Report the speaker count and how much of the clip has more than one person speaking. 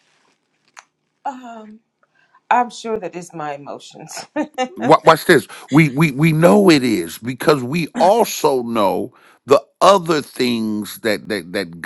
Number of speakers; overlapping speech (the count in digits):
2, no overlap